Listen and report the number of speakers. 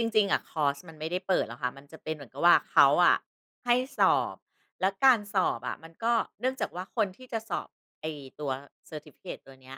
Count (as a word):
one